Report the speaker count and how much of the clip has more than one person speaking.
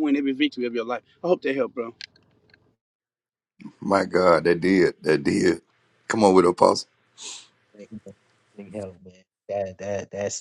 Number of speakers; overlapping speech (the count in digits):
3, no overlap